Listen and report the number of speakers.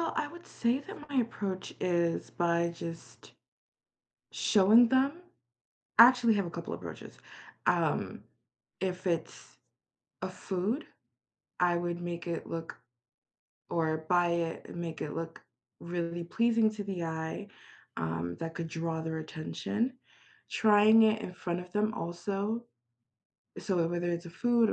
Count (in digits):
1